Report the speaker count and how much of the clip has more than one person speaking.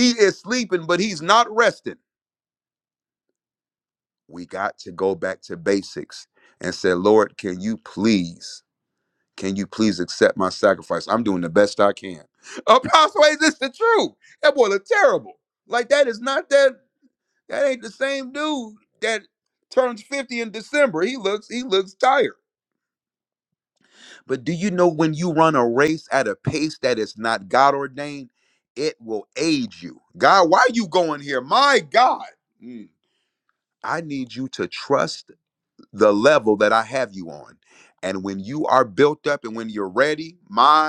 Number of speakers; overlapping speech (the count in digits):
1, no overlap